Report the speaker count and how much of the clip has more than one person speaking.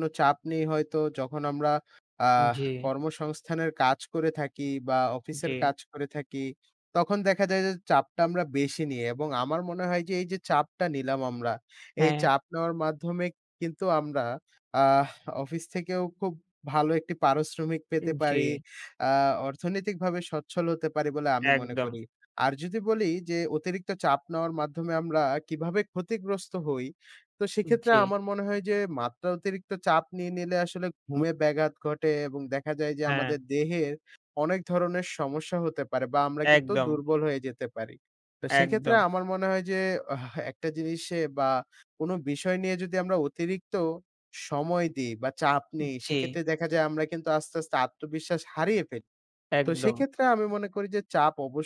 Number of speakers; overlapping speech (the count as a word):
two, about 8%